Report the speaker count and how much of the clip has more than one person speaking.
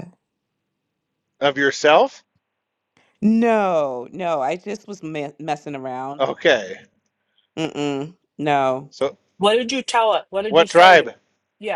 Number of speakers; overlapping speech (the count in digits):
3, about 5%